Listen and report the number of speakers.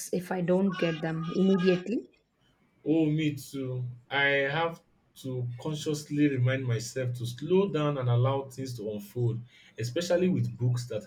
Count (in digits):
2